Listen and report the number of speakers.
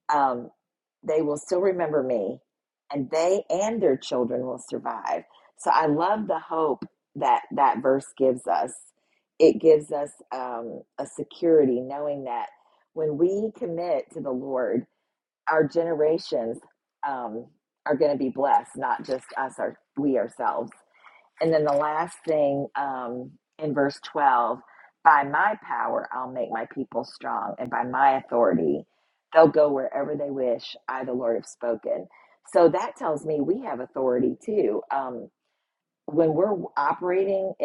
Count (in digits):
1